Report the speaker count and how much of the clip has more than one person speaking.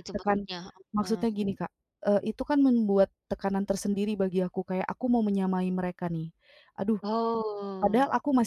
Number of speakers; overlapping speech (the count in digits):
2, about 11%